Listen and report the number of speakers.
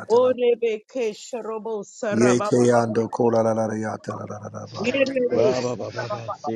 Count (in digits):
3